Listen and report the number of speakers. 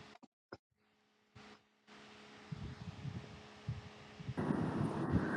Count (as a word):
zero